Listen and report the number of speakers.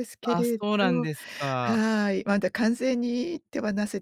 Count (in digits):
2